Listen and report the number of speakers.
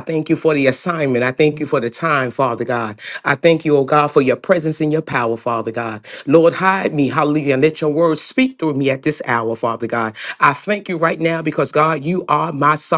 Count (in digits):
1